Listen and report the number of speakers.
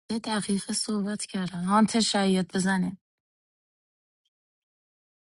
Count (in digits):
1